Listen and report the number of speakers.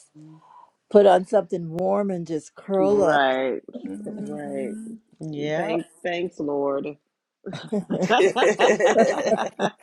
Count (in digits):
3